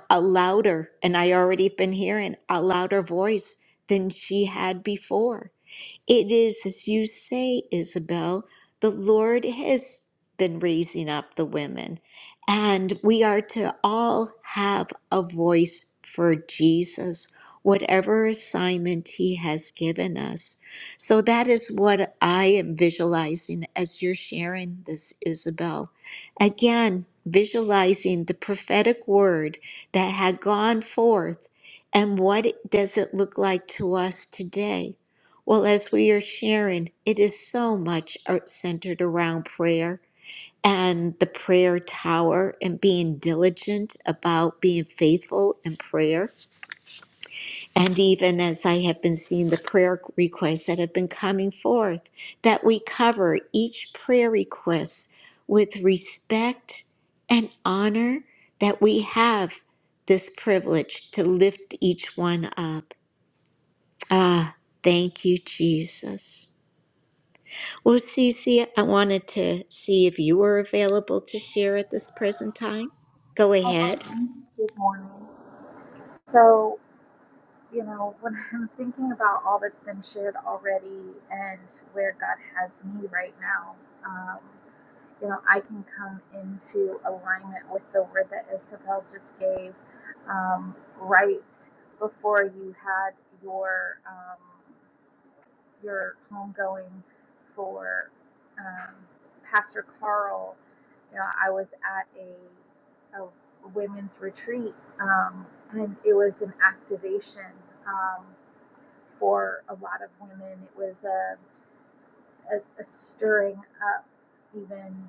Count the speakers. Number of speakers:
two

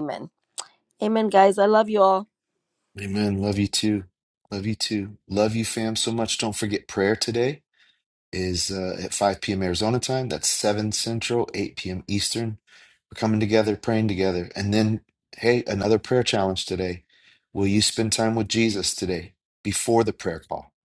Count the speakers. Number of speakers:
two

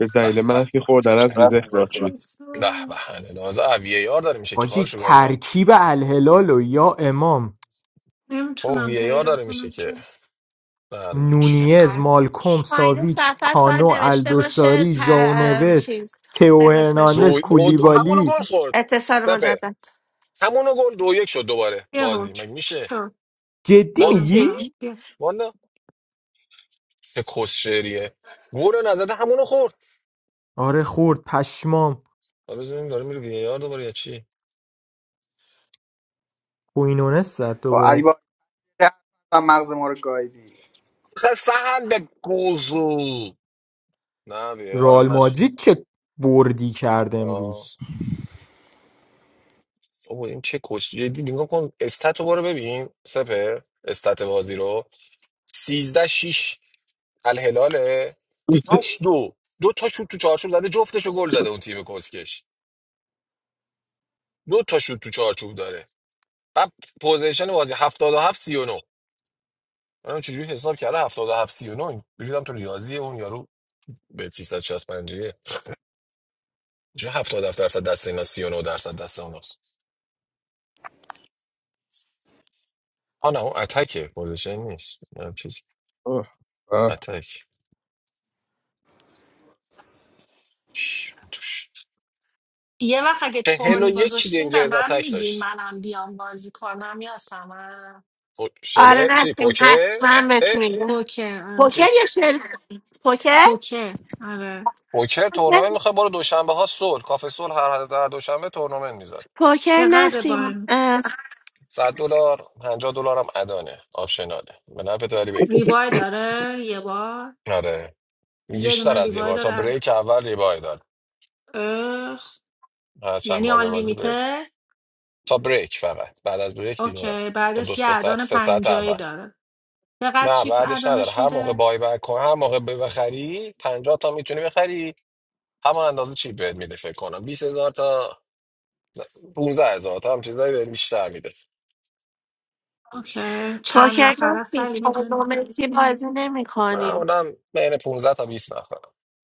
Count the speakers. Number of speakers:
six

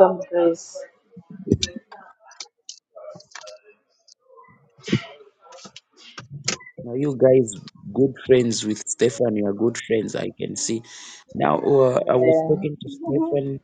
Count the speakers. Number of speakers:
two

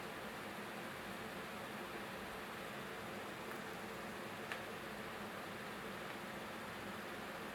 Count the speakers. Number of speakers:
zero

